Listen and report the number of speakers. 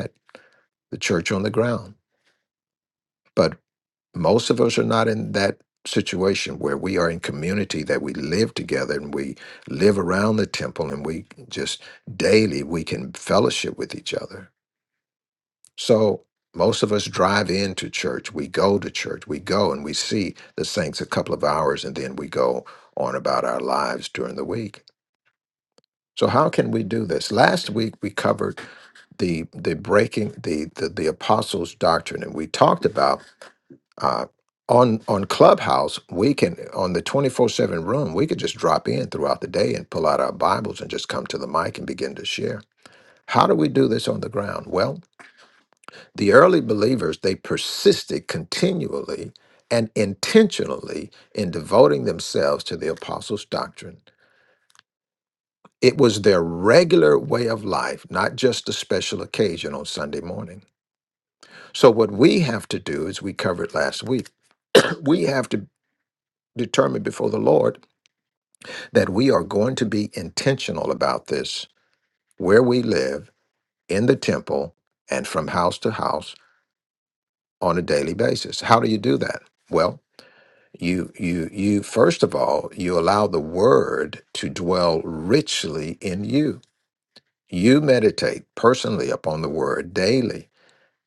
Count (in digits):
1